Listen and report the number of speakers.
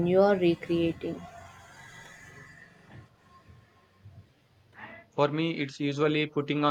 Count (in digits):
2